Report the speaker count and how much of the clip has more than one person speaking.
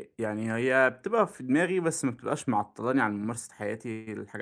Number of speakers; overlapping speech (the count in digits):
1, no overlap